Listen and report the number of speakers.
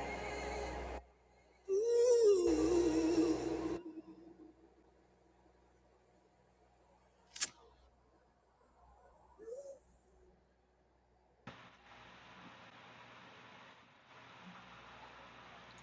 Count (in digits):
0